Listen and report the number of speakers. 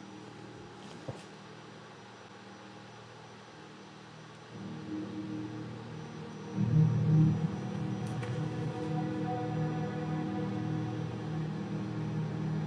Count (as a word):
zero